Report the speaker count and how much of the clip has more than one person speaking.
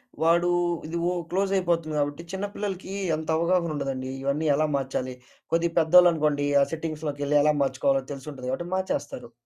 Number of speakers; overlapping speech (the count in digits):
1, no overlap